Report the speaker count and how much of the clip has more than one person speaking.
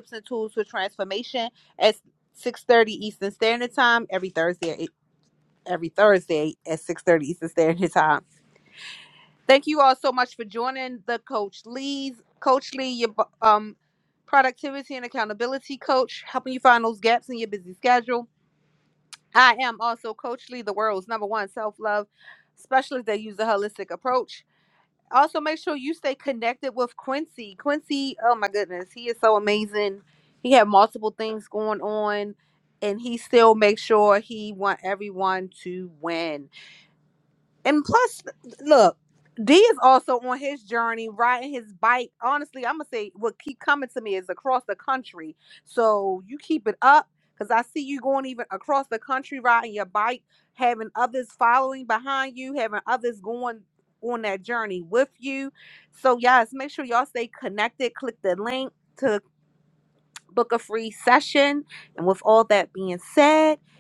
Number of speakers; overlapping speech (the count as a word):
one, no overlap